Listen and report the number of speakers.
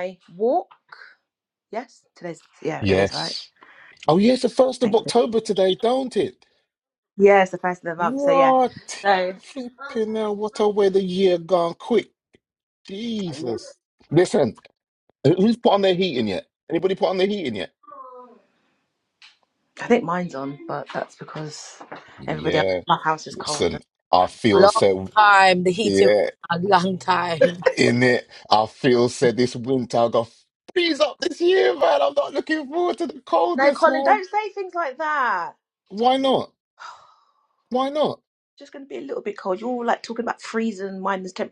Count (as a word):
three